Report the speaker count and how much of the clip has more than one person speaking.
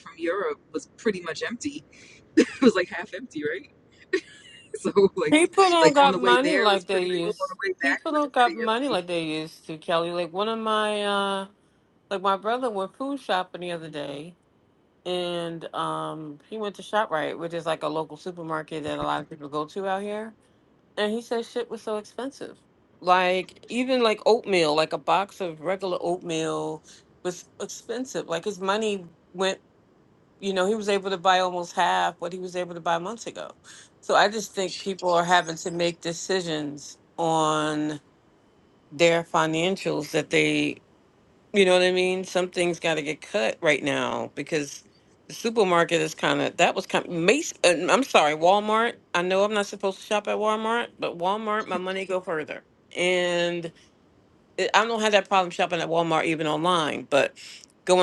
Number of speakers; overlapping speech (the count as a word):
two, about 5%